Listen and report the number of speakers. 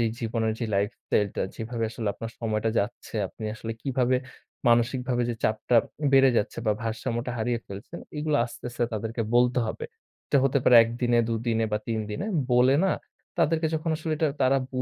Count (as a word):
one